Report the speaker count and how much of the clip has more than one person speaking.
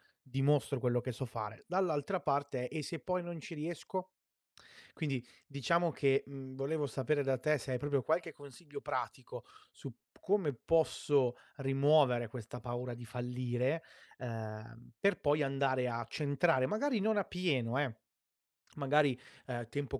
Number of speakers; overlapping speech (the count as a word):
one, no overlap